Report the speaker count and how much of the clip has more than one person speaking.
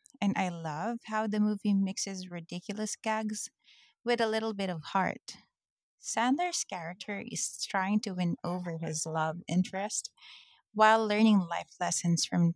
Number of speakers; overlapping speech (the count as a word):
one, no overlap